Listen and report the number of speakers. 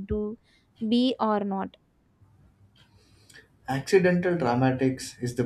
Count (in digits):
2